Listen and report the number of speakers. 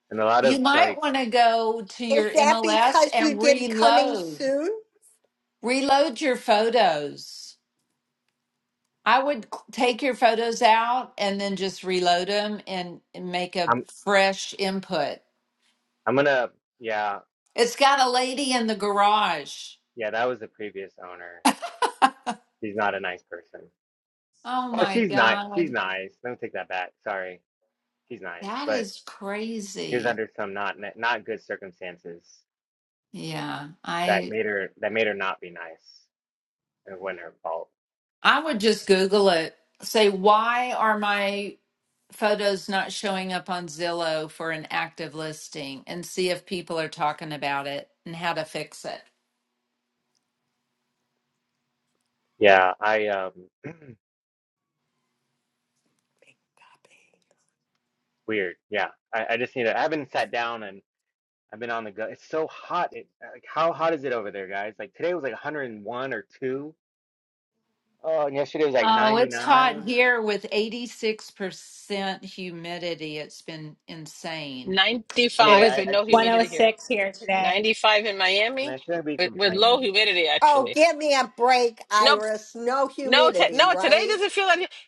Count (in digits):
5